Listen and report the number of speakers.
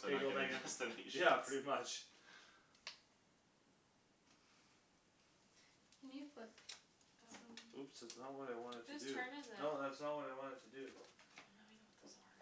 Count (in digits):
4